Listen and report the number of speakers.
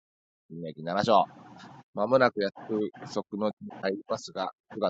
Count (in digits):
1